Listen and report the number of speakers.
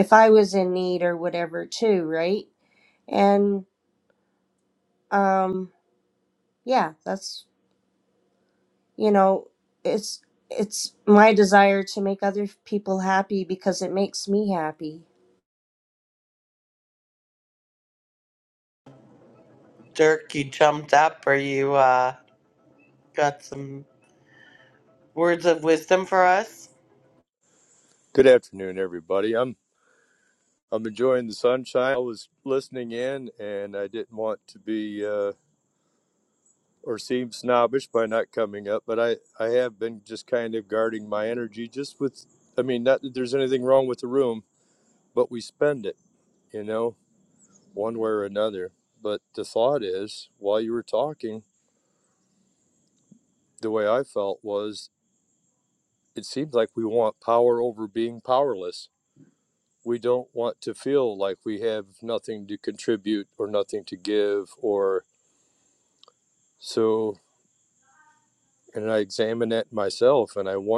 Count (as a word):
three